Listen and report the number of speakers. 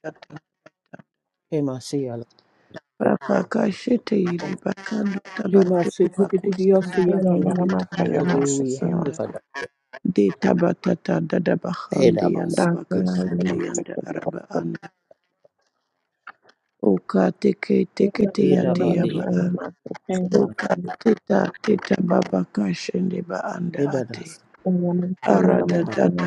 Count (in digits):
3